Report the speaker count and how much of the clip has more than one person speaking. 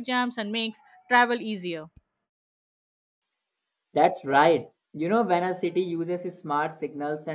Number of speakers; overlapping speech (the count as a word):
two, no overlap